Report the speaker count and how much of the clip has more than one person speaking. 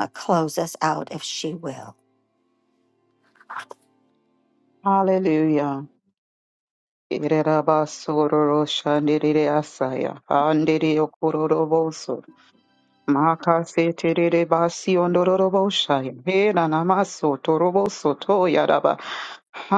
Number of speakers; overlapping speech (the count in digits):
2, no overlap